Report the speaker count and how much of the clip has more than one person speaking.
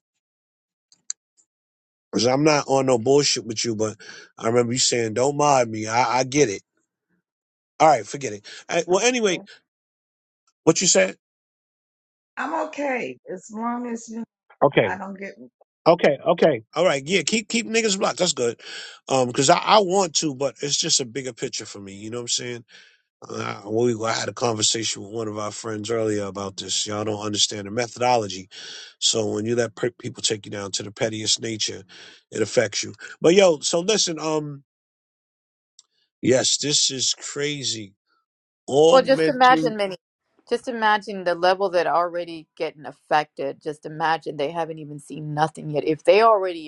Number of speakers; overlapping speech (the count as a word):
three, about 3%